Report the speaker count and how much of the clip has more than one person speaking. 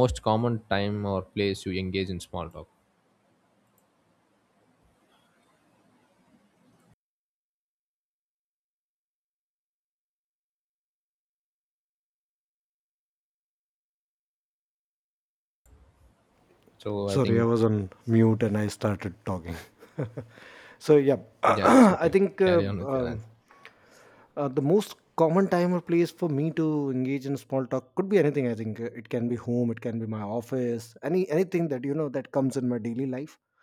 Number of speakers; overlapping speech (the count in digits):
2, about 6%